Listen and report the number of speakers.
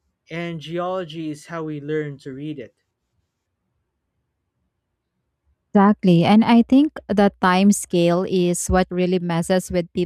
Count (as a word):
two